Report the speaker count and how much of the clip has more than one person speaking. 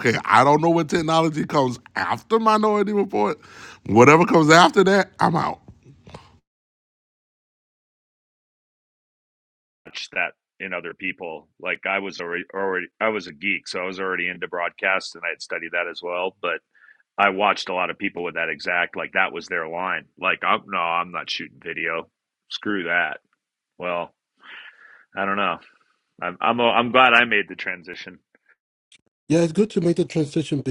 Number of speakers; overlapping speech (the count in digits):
3, no overlap